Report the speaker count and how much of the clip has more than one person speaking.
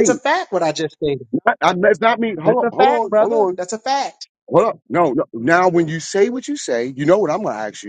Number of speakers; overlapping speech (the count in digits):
2, about 17%